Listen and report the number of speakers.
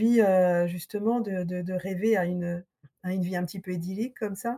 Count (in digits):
1